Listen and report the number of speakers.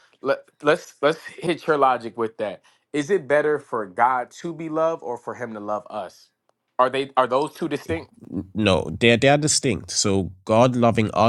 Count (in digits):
2